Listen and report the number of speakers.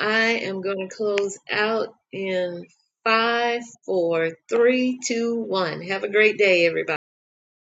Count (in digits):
1